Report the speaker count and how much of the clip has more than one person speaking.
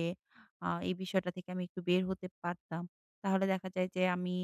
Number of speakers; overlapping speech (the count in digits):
1, no overlap